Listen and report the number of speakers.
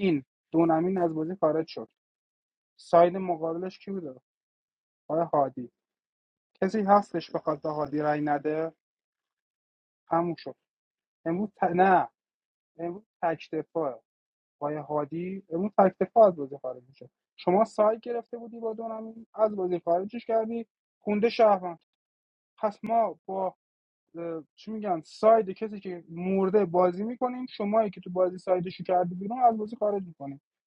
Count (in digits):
1